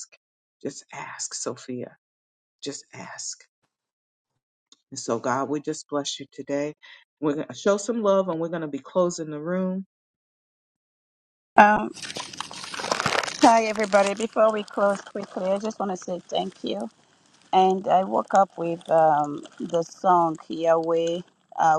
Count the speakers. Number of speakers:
two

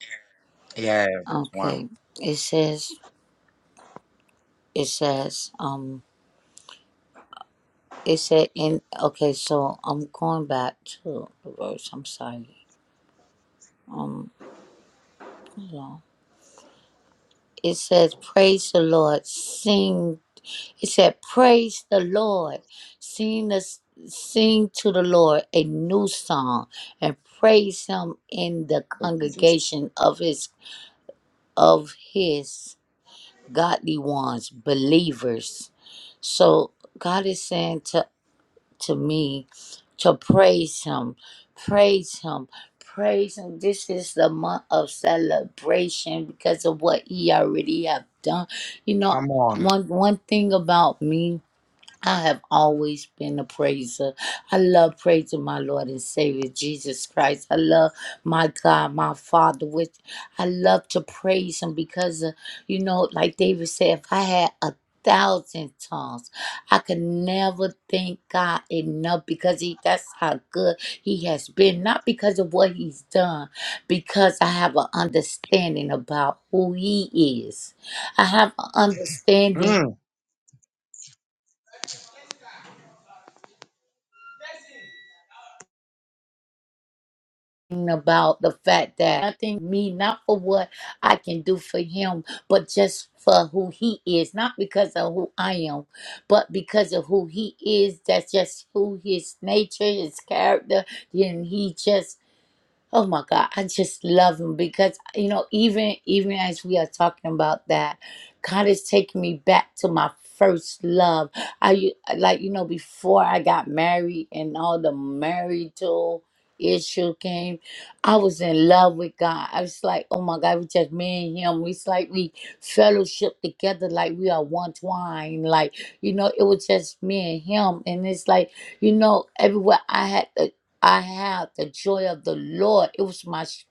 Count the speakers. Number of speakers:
two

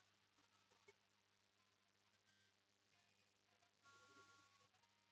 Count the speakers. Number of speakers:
zero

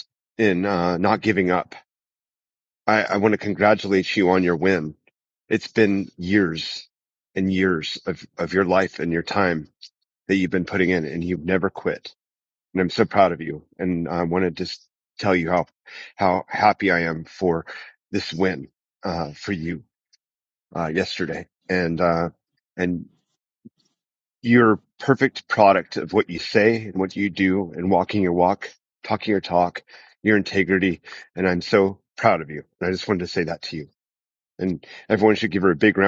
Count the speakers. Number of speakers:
one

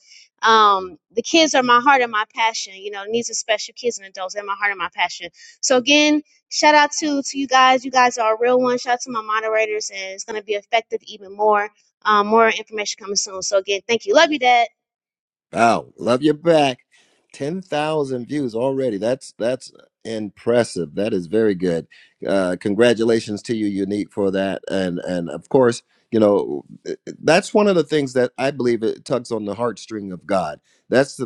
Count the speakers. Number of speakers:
two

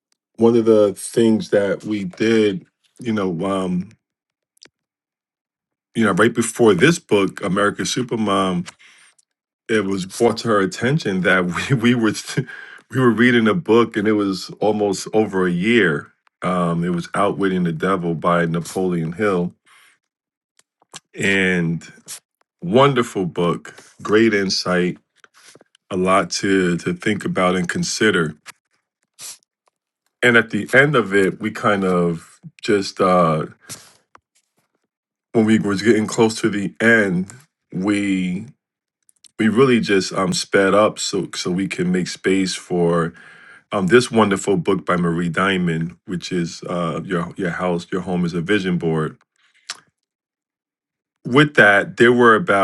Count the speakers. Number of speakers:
one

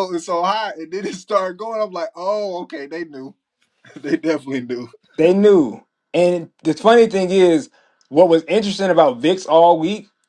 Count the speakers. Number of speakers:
two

